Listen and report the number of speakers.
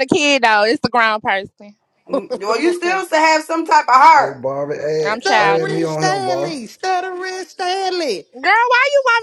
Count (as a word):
four